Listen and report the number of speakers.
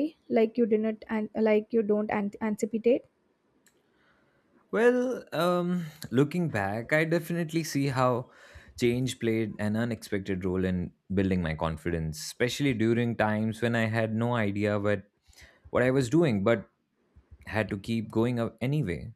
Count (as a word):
two